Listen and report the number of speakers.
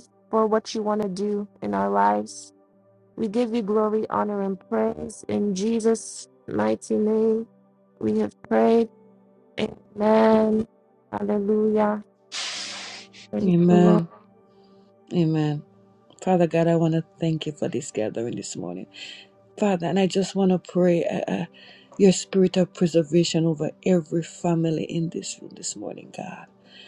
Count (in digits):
2